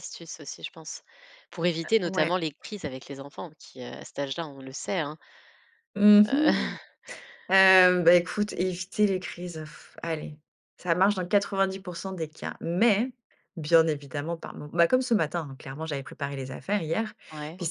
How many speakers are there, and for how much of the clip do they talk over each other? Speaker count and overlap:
2, about 4%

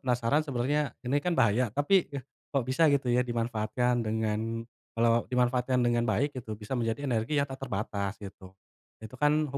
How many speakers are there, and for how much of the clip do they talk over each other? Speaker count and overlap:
1, no overlap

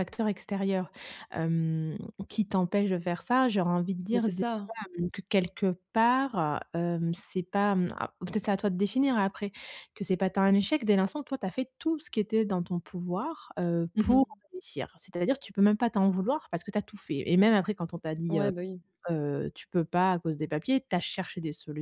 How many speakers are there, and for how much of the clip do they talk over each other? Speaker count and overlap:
2, about 4%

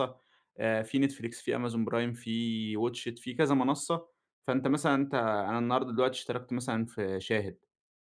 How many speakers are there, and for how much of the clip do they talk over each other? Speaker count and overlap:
1, no overlap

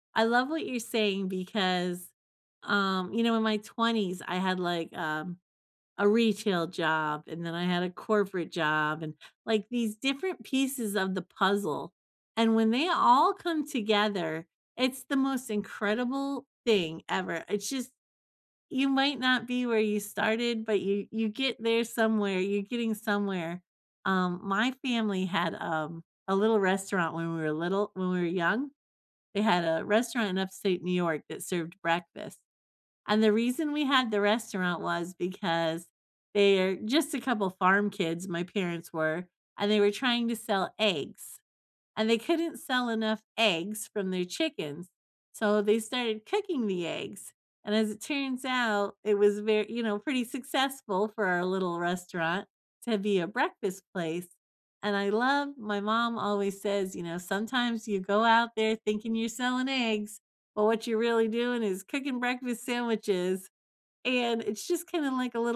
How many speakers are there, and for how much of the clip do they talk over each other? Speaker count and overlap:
1, no overlap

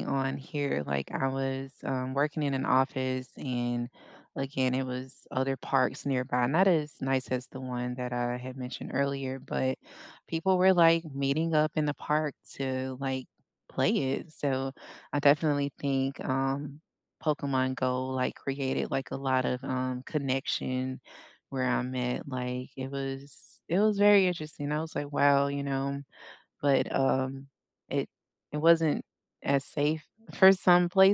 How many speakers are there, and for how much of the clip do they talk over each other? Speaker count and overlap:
1, no overlap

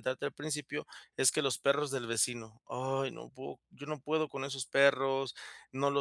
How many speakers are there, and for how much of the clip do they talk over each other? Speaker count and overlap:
1, no overlap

